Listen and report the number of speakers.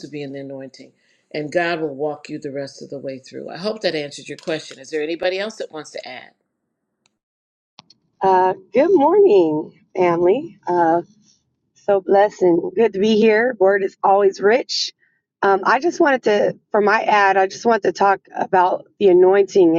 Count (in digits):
2